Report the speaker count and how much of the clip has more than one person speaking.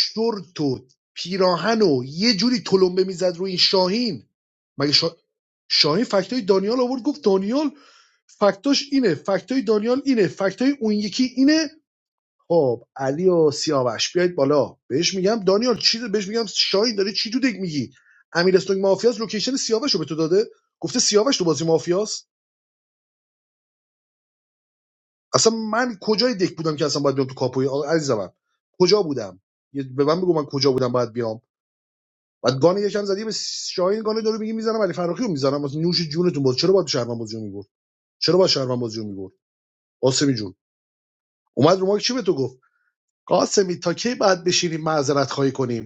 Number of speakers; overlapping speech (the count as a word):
one, no overlap